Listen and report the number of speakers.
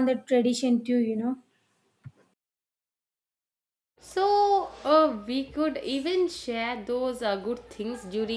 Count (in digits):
2